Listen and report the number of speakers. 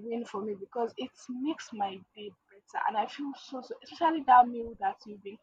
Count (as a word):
one